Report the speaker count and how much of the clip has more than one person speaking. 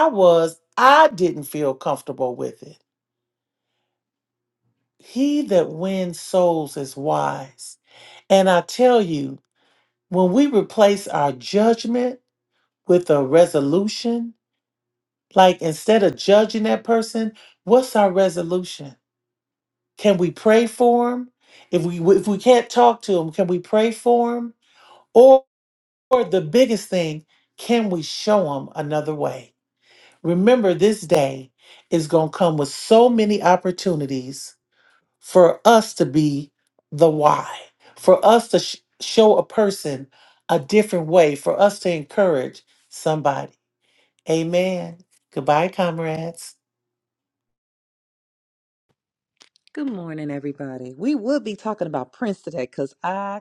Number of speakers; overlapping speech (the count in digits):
2, no overlap